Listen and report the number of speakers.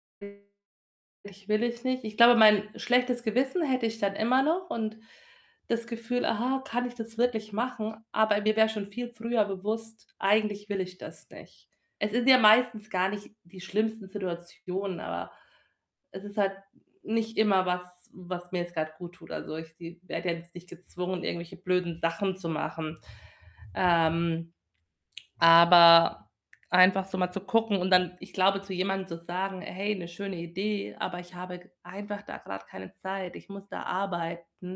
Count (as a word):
one